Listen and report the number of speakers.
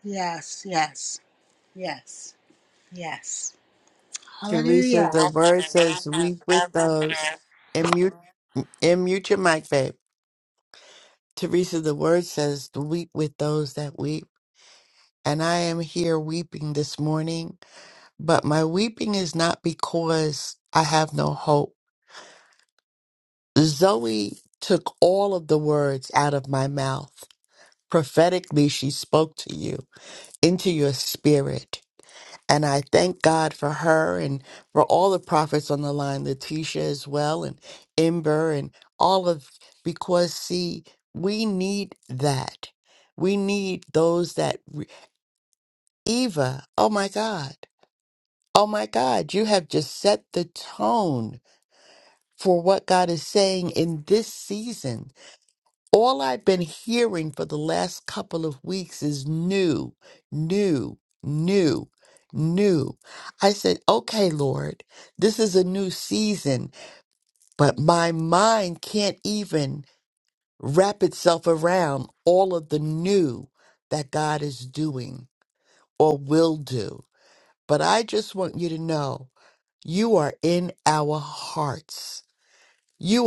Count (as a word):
two